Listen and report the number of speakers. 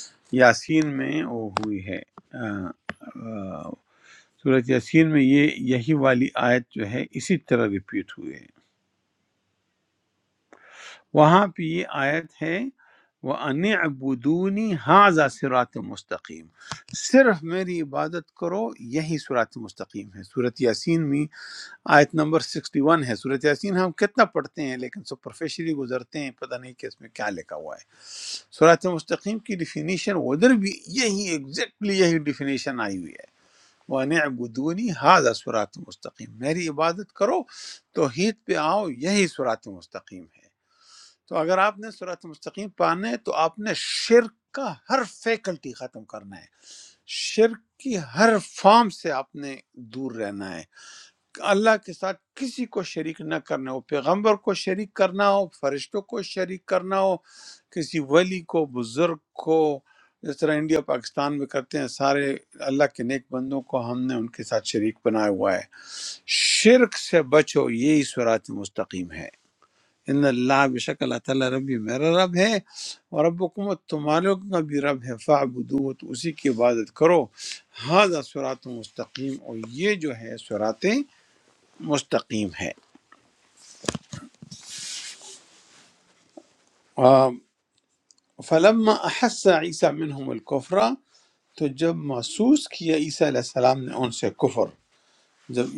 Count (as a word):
one